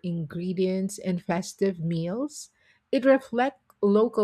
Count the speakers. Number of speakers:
one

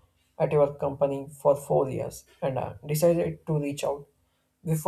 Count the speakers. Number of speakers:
one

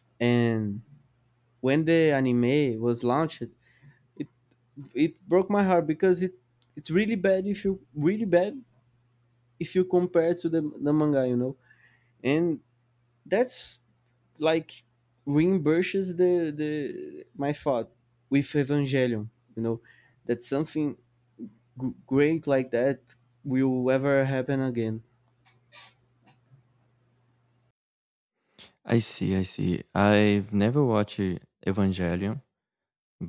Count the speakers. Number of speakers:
two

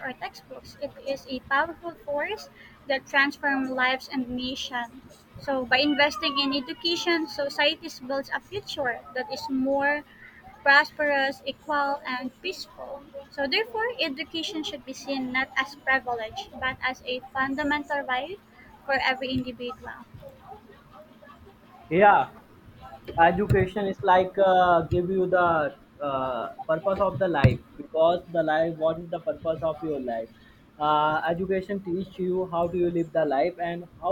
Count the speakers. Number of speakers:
two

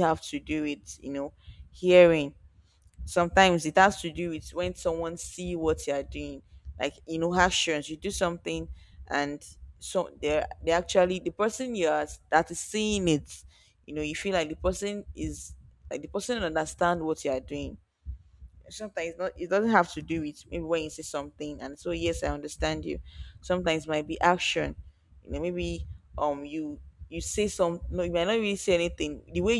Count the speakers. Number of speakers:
one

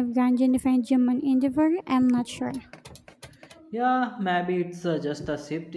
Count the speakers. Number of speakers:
two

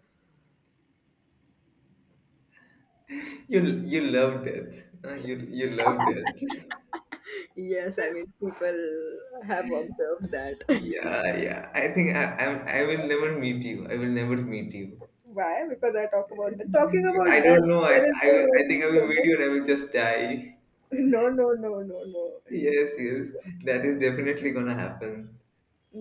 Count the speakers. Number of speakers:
two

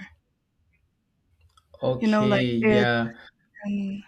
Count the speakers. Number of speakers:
two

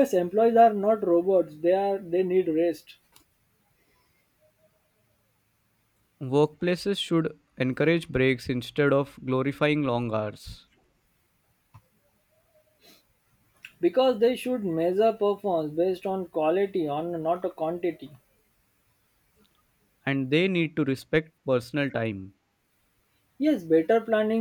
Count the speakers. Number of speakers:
two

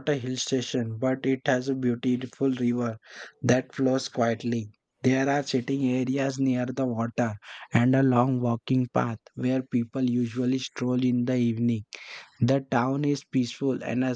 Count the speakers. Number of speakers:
one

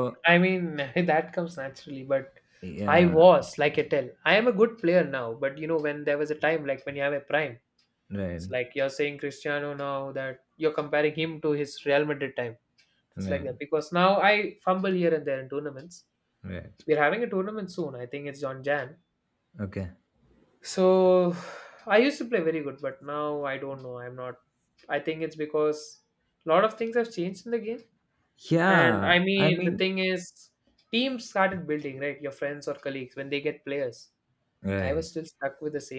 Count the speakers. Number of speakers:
two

